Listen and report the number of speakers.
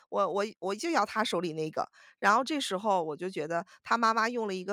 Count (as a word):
one